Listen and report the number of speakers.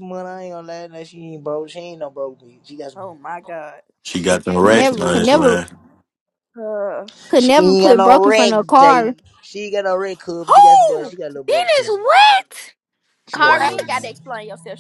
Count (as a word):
four